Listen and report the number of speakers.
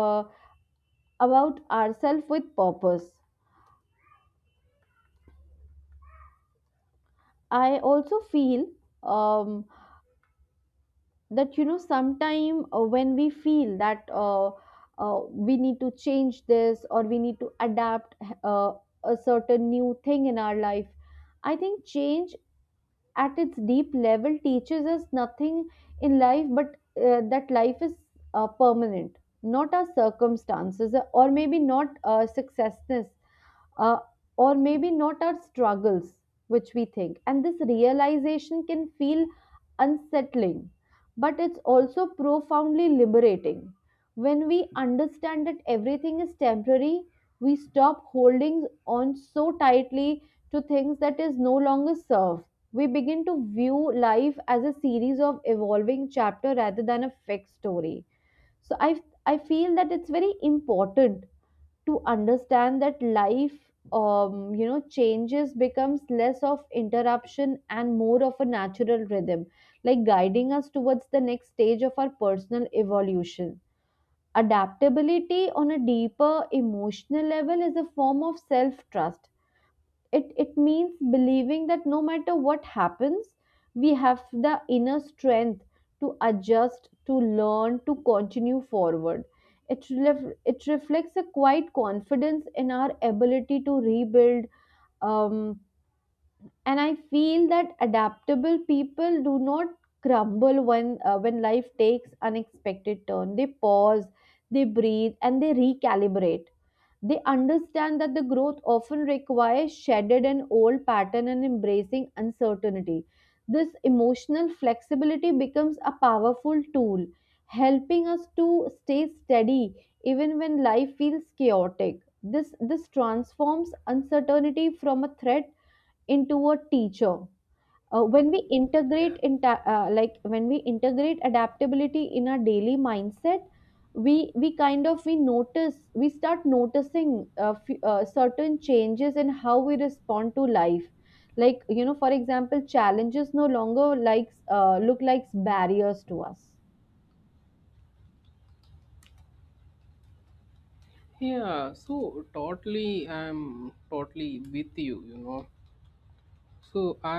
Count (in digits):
2